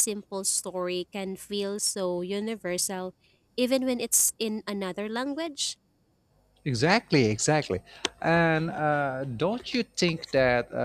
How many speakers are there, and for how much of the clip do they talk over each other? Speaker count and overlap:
2, no overlap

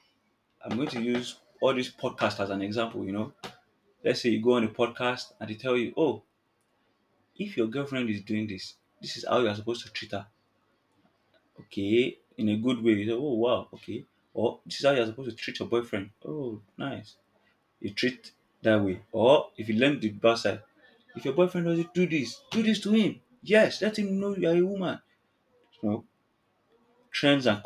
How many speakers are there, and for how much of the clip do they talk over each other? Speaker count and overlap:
1, no overlap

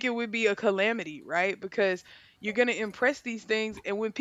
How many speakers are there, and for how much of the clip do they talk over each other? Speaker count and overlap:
1, no overlap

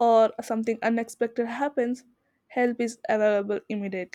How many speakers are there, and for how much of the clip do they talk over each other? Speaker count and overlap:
1, no overlap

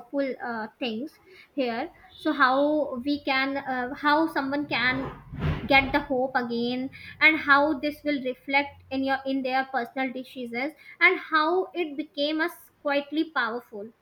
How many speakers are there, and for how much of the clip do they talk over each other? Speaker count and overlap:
1, no overlap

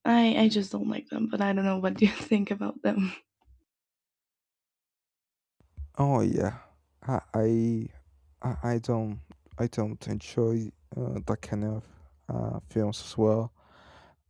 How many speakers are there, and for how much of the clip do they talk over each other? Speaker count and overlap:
2, no overlap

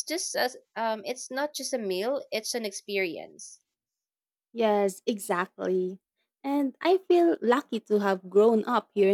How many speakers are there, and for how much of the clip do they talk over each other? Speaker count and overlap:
2, no overlap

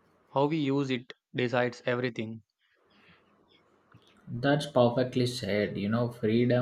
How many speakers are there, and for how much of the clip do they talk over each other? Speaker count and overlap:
2, no overlap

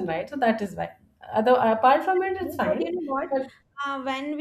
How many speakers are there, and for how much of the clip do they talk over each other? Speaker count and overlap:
2, about 15%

